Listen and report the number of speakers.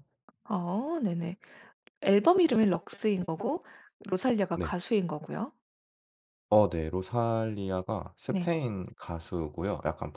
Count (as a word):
two